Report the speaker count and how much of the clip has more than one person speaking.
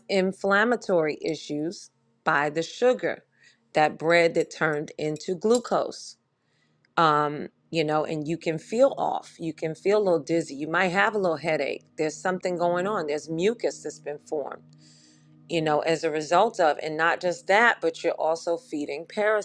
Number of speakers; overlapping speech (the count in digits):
1, no overlap